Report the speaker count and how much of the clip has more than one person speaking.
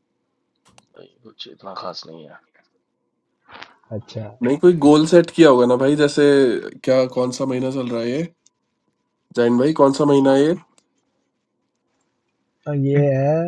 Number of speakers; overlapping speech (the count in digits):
3, no overlap